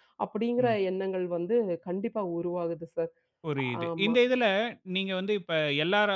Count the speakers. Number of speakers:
2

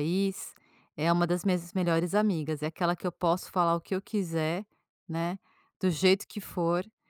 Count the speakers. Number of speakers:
1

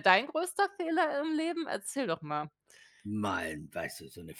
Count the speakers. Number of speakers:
2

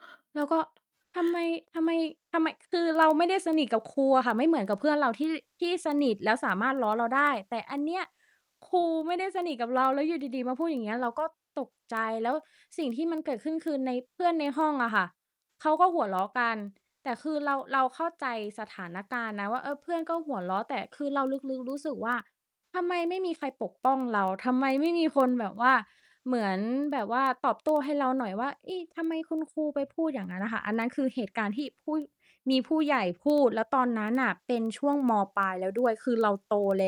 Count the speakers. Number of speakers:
1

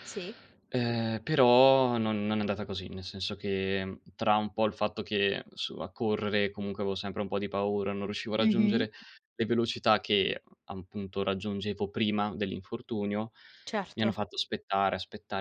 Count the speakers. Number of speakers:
2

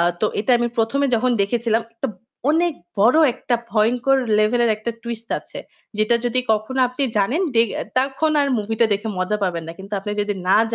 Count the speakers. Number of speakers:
1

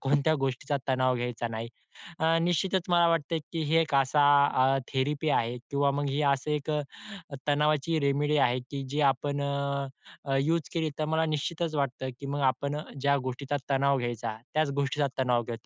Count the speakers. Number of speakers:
1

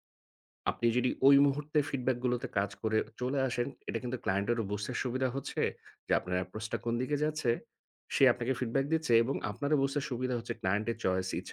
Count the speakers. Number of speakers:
1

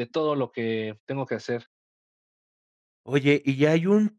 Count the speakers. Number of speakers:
2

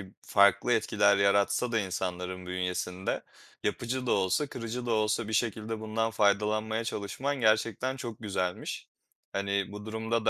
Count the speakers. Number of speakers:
1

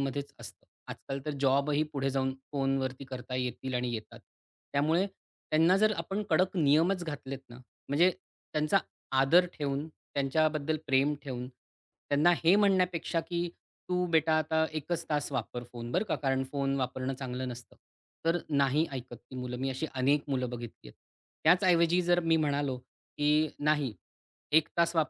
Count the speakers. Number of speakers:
1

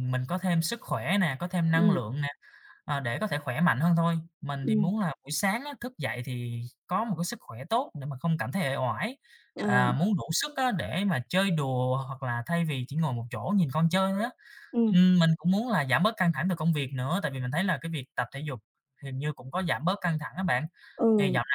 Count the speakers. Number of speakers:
2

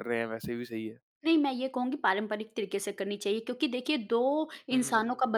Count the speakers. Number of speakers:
2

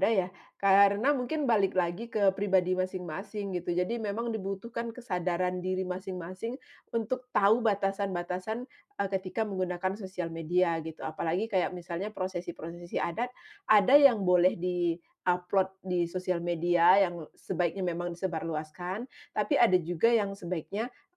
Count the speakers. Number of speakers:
1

